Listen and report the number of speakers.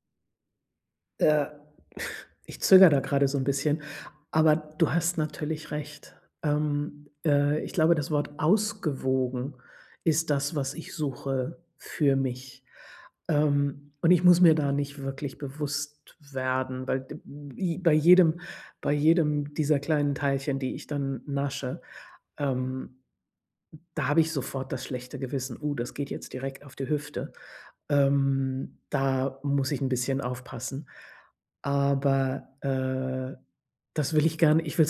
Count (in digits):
1